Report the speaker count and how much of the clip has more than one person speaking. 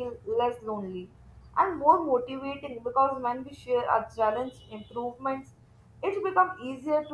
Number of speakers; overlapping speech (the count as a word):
one, no overlap